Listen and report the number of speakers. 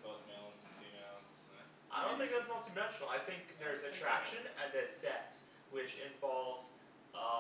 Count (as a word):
two